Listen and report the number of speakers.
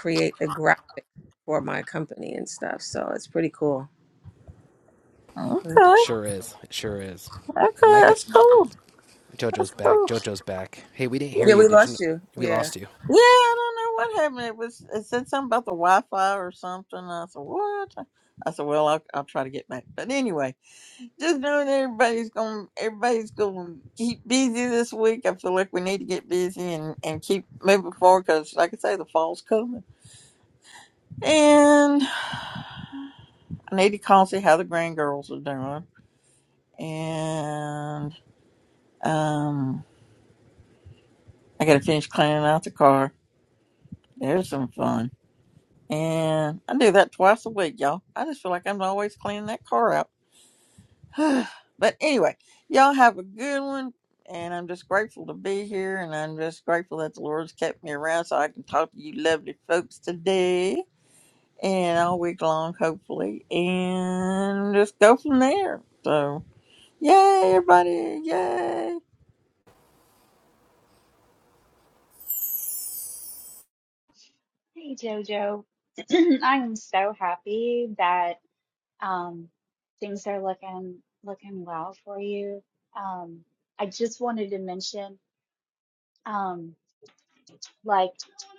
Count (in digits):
4